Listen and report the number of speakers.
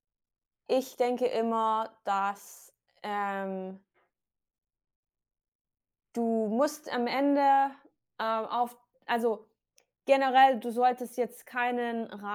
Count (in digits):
1